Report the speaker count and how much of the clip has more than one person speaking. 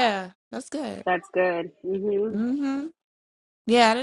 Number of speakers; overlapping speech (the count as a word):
two, about 2%